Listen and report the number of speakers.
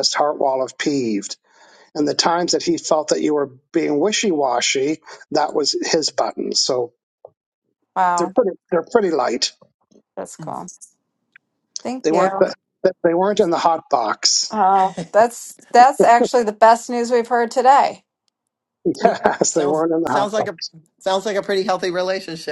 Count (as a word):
three